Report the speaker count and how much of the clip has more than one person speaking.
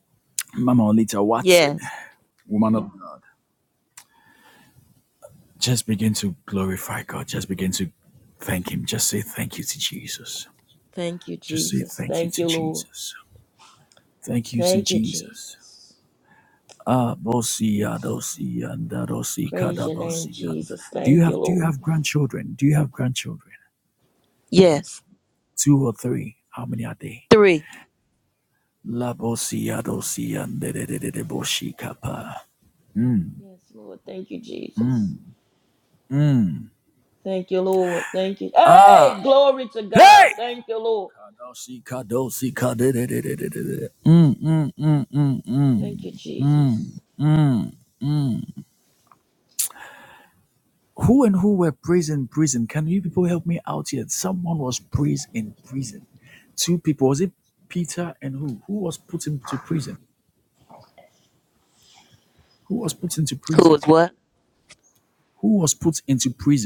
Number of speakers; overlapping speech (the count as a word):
two, about 8%